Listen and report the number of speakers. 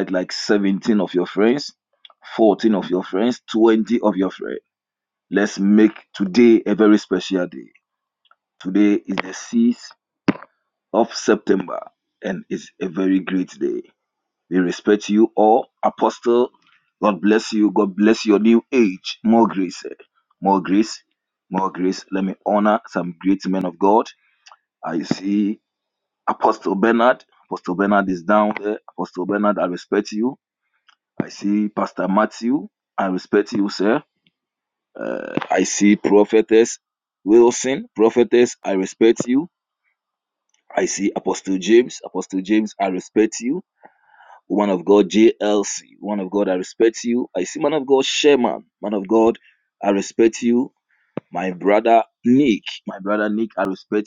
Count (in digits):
1